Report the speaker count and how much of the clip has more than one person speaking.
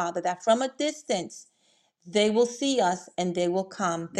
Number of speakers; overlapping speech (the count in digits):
1, no overlap